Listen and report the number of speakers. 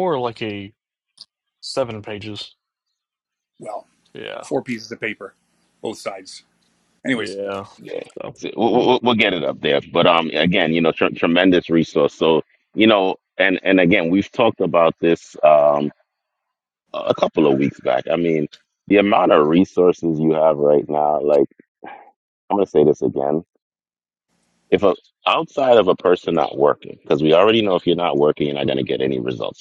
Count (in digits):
3